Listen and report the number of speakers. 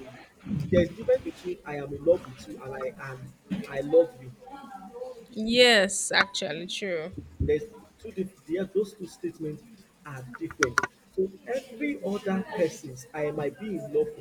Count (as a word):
two